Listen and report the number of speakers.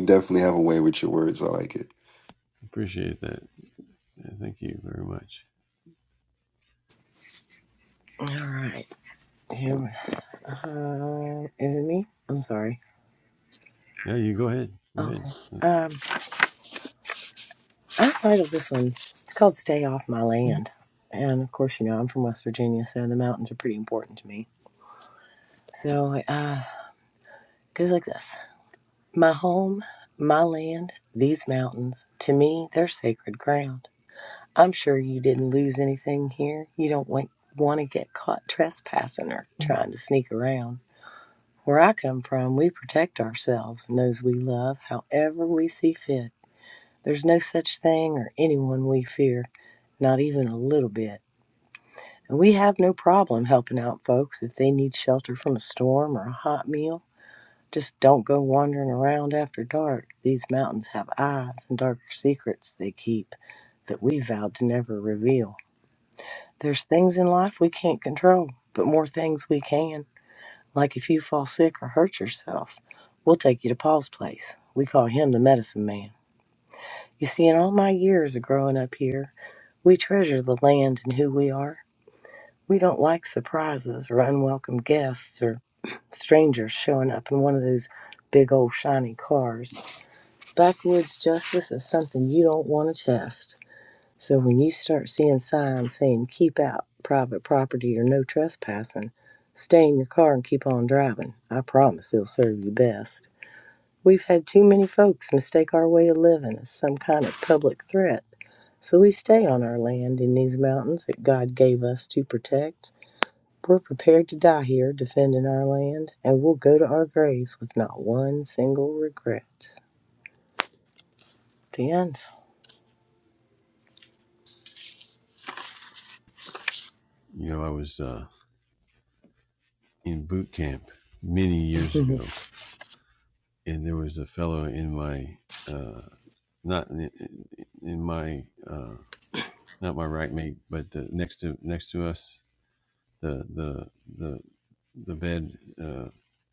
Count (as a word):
three